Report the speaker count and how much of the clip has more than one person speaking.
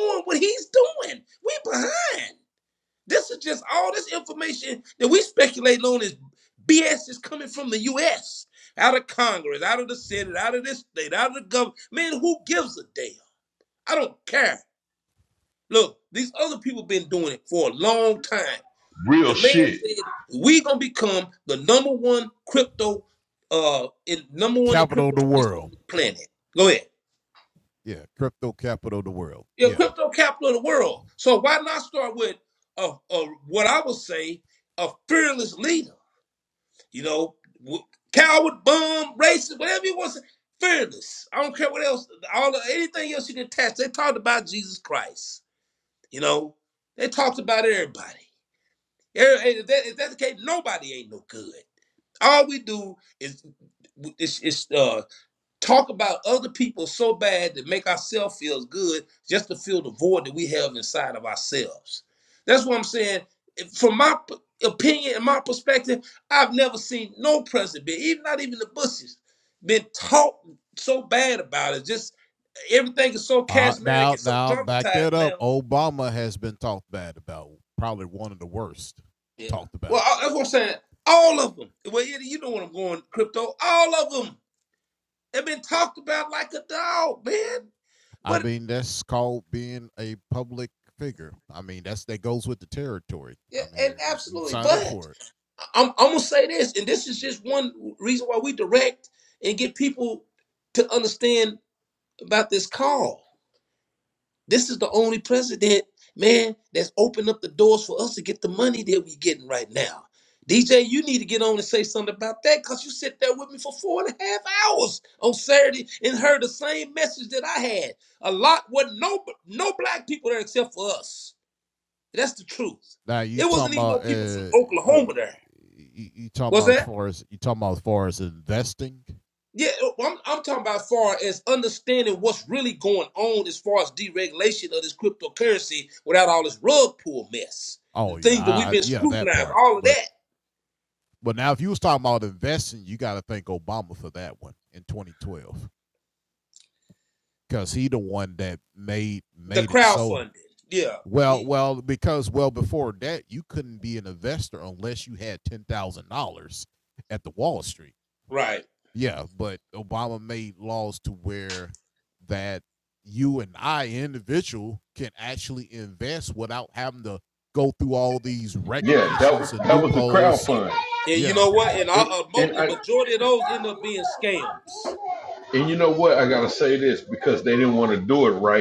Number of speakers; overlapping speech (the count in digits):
3, about 7%